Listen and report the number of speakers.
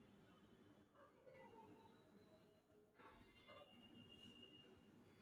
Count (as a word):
zero